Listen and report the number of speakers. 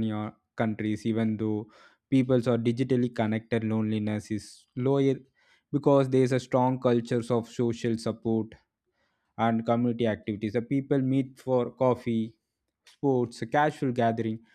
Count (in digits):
1